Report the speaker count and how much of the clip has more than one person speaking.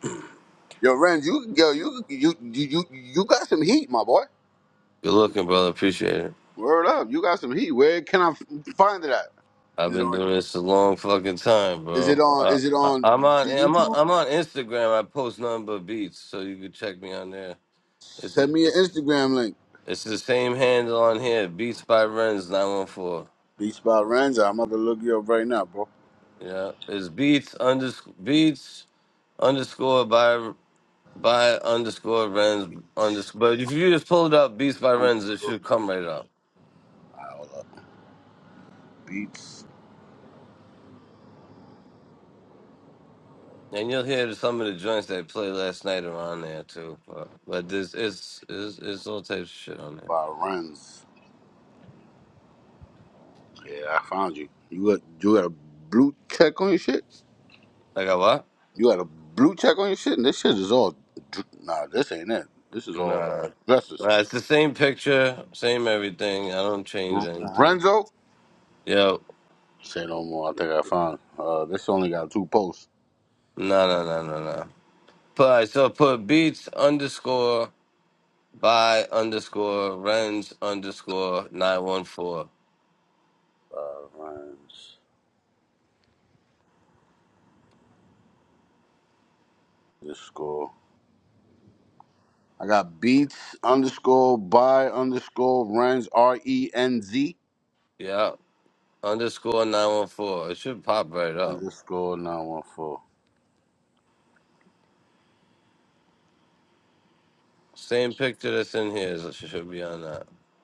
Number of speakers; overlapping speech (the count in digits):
2, about 3%